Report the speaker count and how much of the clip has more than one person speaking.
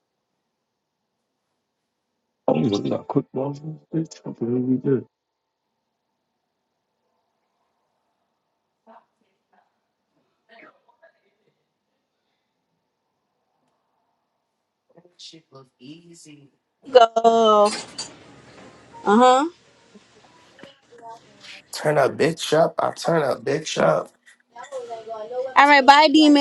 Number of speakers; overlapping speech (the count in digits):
3, no overlap